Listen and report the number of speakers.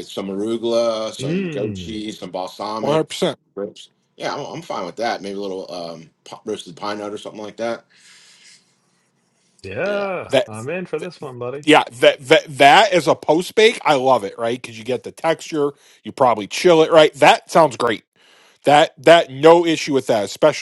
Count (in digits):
3